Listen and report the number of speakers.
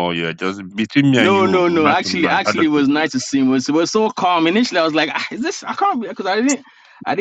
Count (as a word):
two